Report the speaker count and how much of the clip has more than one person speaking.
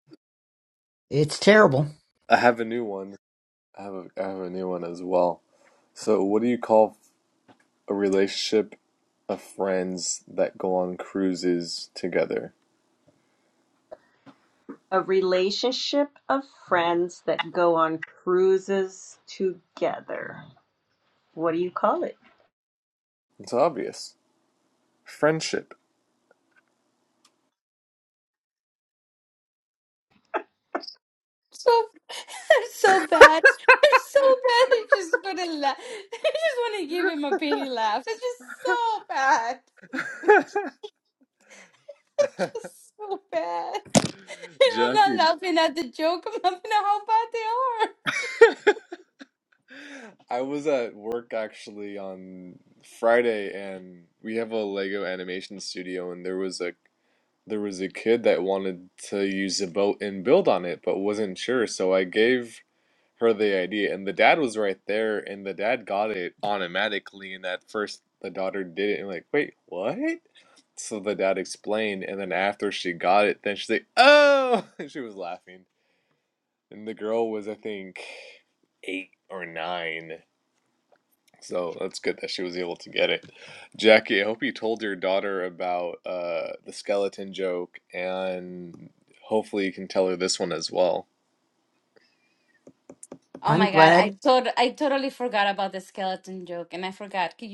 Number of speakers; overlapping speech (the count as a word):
four, about 1%